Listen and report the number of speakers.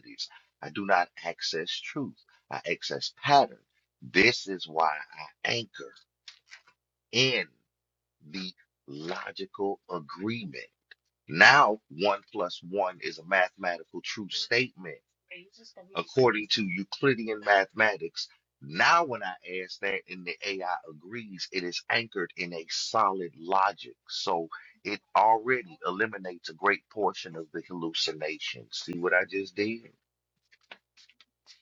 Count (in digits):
1